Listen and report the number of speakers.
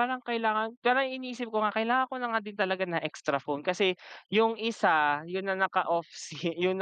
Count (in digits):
1